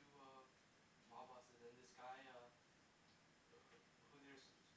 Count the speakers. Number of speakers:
1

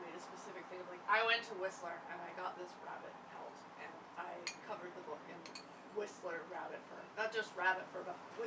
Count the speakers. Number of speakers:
1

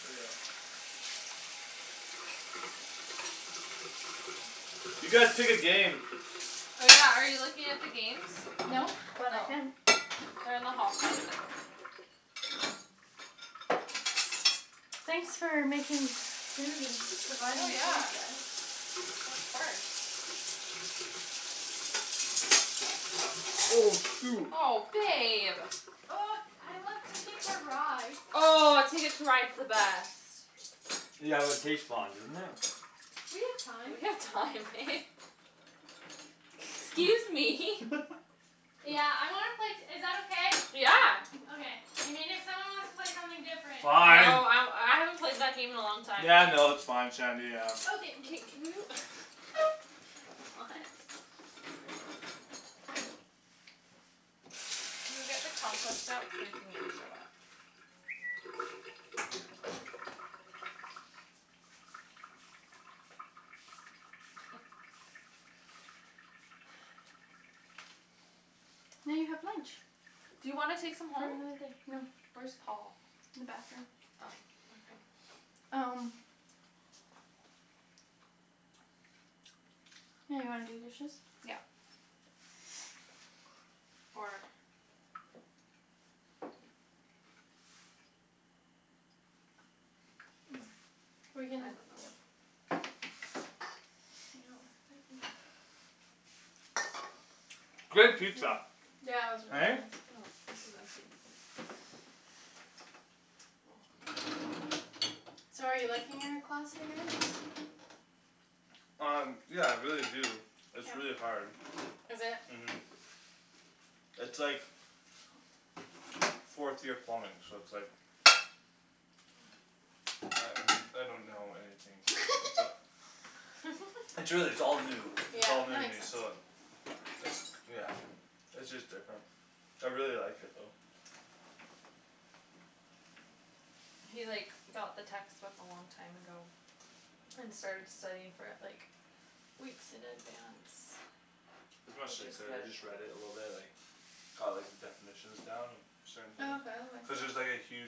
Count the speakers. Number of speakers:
3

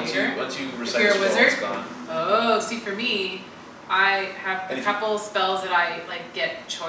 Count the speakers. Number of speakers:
2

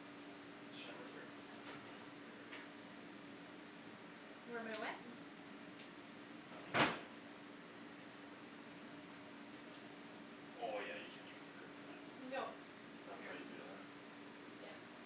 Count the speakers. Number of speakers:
2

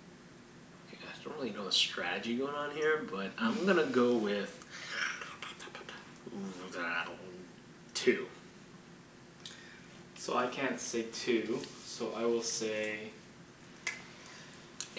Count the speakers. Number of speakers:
2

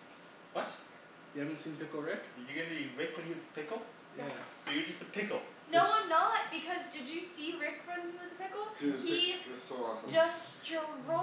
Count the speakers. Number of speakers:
4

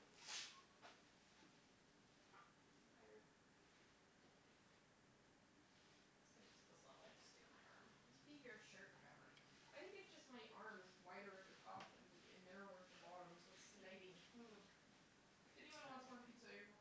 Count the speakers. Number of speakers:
2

